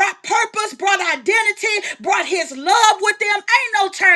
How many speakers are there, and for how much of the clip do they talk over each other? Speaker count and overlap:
one, no overlap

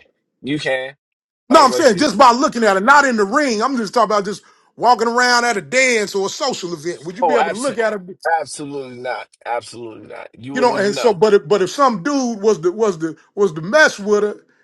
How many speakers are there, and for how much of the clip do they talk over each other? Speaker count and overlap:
two, about 12%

